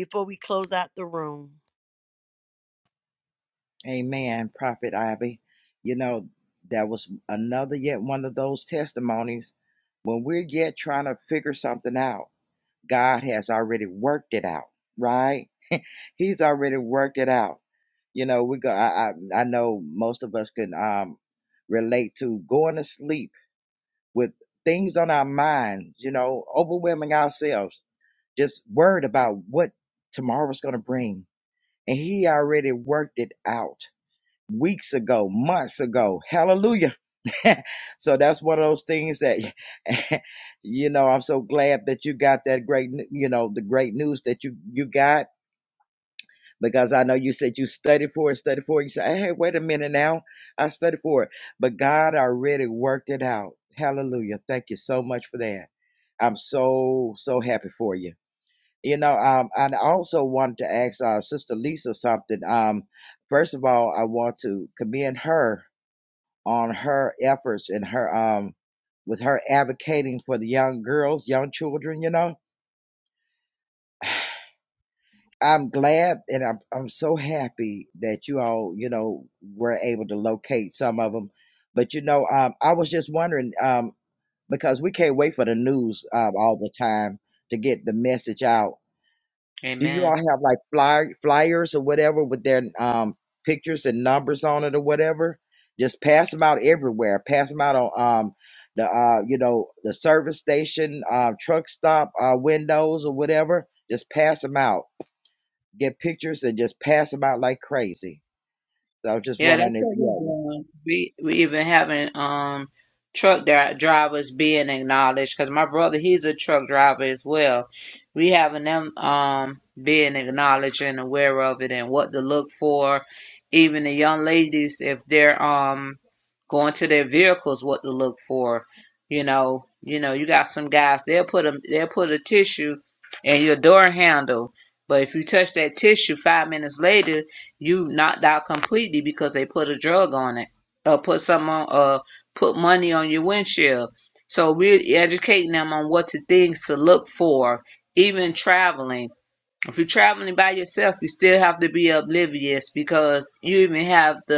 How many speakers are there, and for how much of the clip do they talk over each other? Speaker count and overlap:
3, about 1%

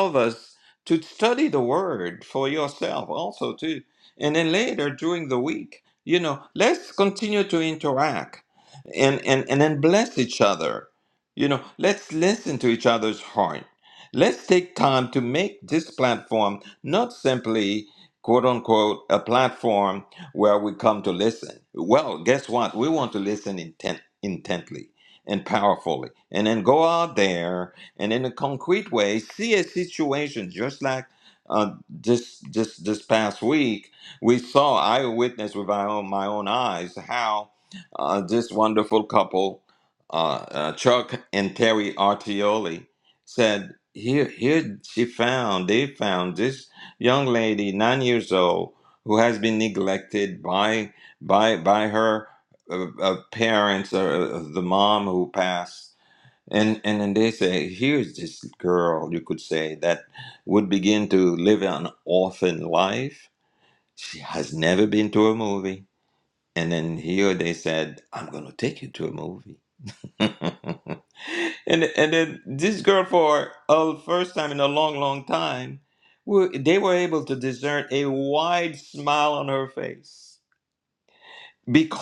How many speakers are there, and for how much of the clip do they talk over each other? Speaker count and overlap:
1, no overlap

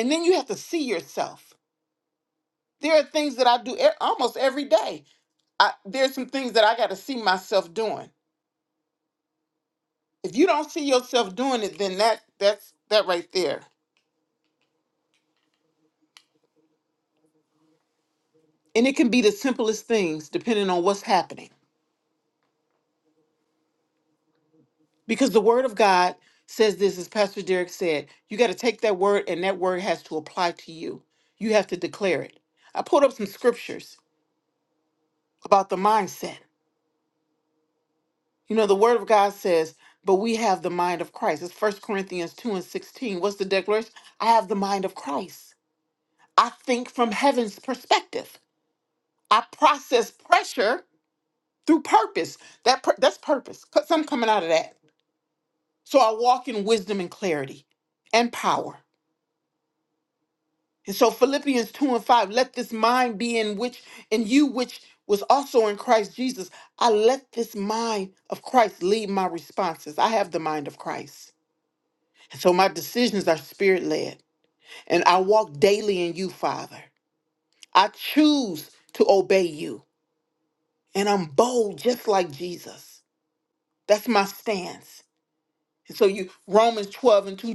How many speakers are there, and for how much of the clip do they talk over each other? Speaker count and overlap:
1, no overlap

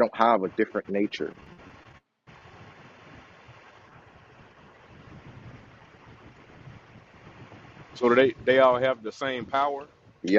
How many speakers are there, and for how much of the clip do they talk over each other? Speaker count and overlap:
2, no overlap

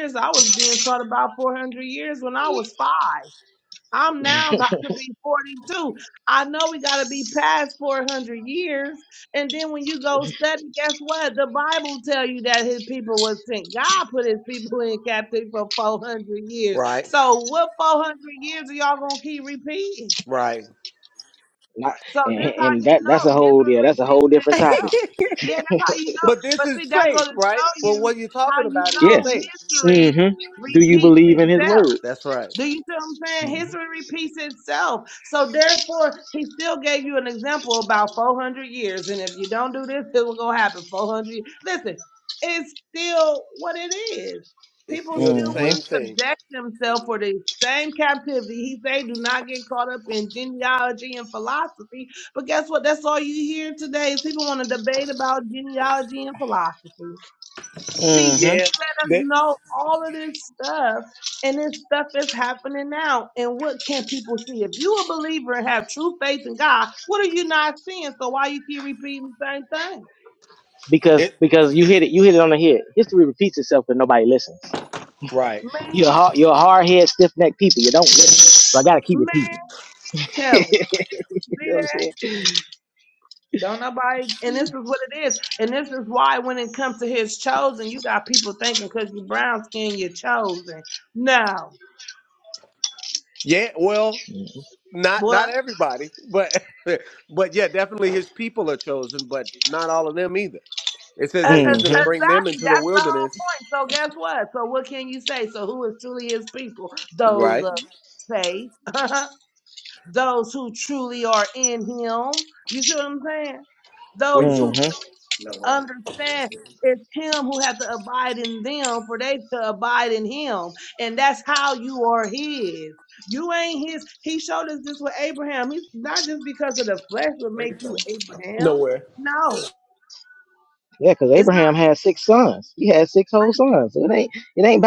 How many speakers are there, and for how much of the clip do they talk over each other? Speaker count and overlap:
3, about 10%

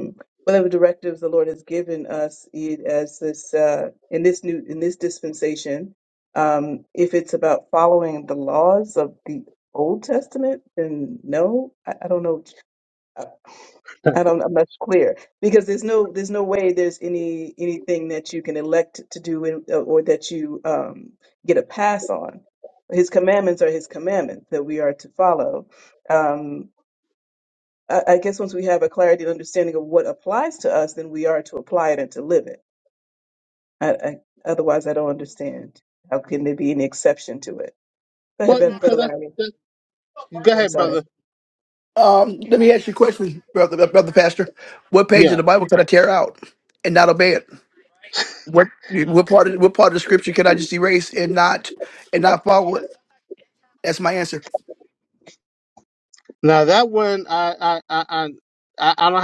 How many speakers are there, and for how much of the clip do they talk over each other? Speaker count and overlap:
3, about 3%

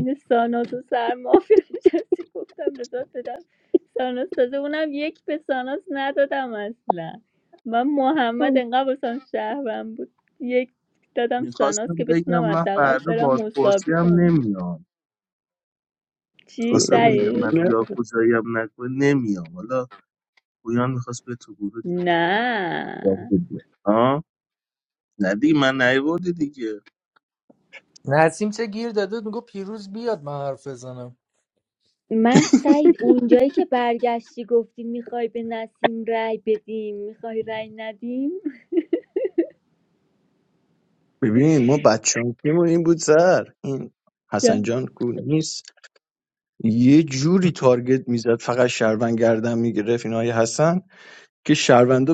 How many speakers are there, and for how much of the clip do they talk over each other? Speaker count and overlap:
4, about 8%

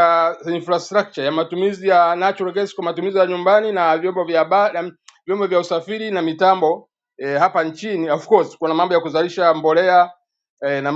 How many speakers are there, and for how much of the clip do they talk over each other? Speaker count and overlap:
1, no overlap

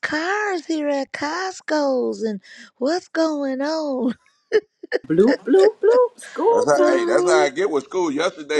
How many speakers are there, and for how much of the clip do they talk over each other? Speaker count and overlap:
3, about 12%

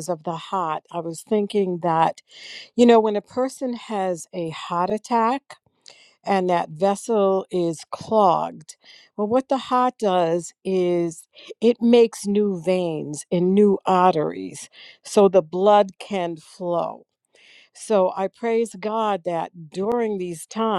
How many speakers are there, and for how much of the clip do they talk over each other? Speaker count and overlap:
1, no overlap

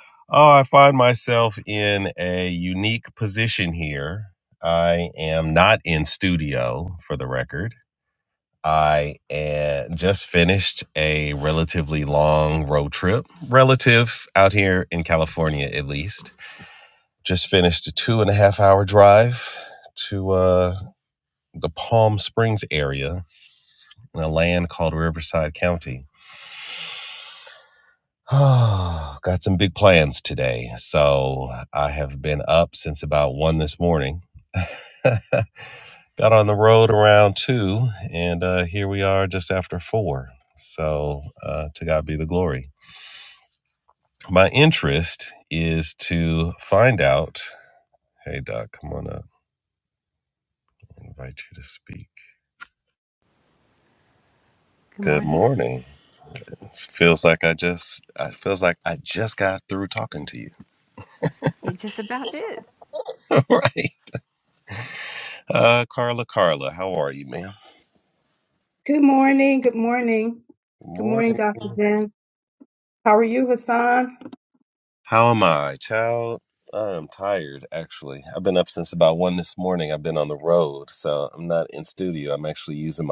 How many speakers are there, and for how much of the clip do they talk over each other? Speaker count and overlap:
3, about 1%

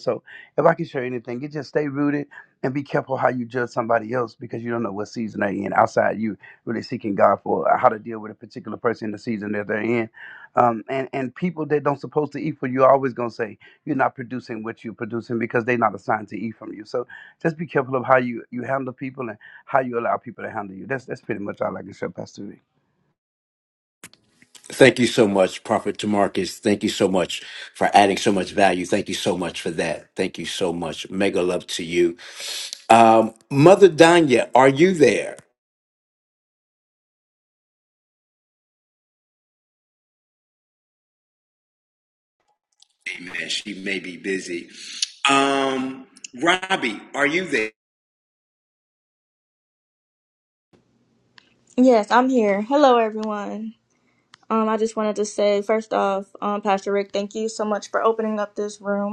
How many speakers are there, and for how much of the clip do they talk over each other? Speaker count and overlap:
3, no overlap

